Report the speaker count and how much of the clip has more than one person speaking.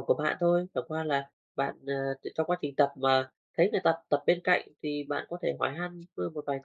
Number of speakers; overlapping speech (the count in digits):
1, no overlap